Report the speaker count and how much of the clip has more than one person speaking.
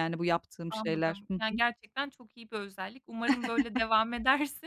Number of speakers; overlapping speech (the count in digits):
2, about 19%